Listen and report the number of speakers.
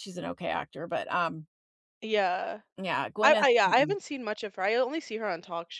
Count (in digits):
2